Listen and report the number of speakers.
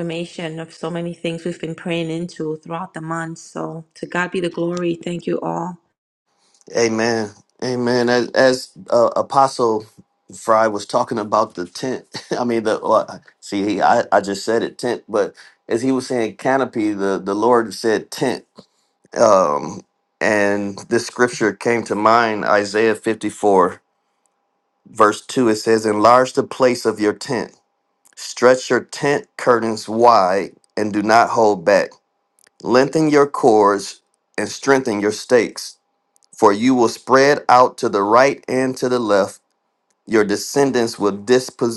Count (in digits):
2